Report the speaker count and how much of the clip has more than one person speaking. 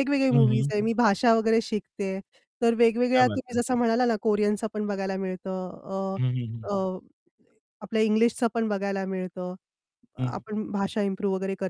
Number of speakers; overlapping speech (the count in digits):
2, about 8%